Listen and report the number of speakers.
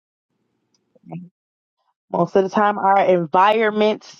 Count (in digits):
1